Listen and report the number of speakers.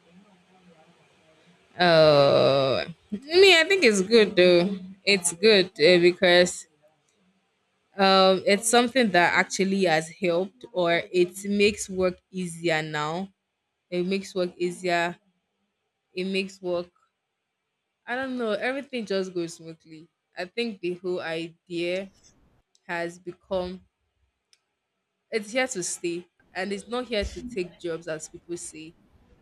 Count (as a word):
one